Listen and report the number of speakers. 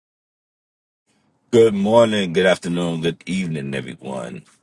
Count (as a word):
one